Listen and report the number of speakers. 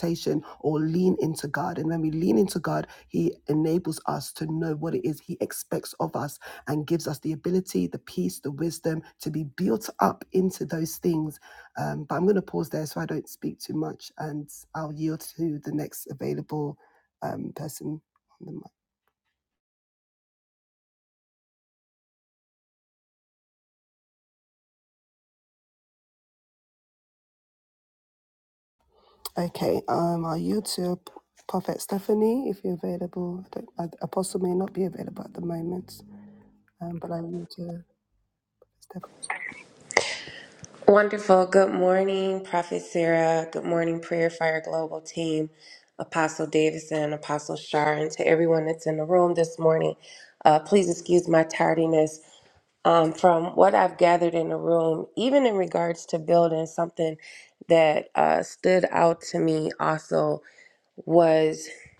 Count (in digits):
2